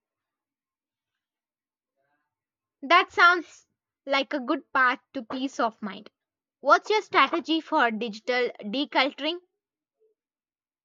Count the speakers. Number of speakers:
1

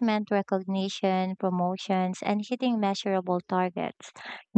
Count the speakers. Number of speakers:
1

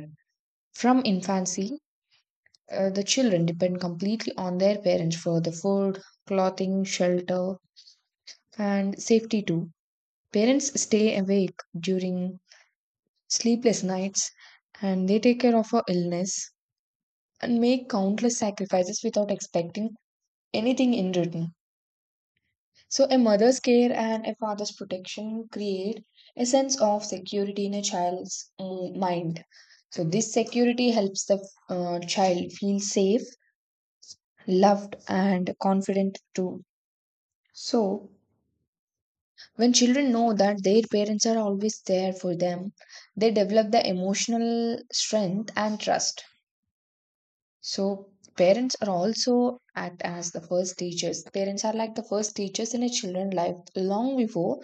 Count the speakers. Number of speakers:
1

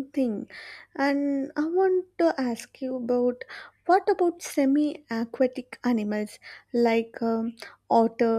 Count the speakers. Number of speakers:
1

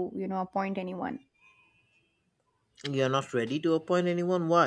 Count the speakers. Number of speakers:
2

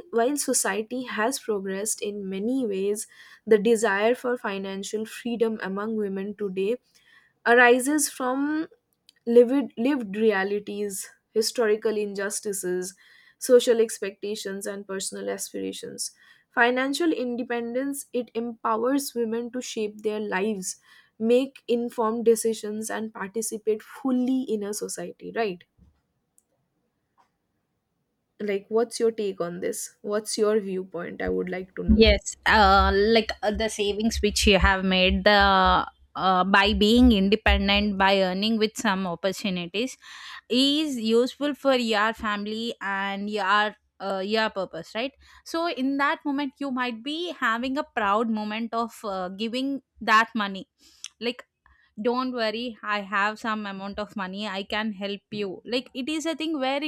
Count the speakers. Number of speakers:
2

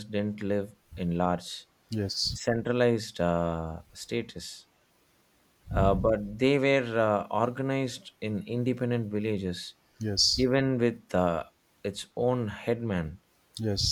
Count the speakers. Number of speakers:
2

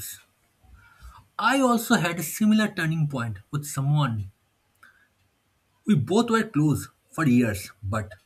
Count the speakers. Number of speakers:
1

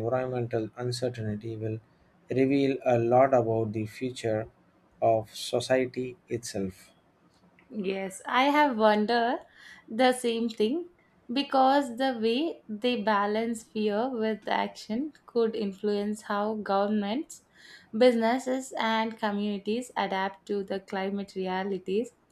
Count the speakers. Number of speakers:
2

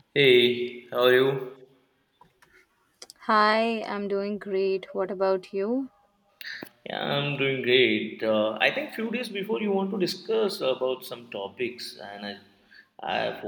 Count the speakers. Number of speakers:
2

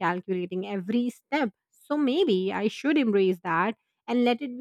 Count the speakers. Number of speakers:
1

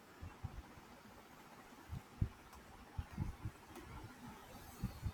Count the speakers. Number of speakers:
0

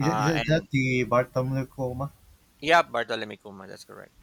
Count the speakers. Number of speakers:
2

